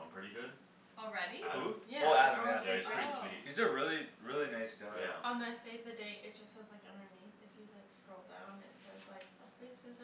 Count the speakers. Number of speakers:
four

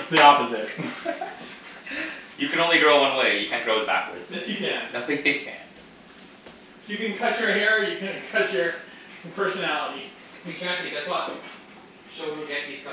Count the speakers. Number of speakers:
three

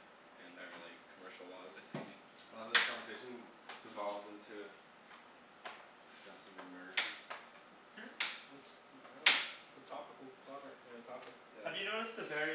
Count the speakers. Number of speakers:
three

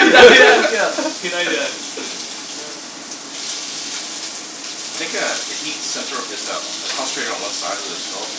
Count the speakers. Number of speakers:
two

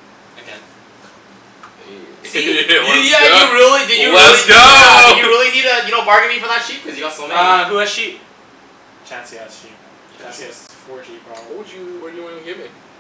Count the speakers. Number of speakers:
four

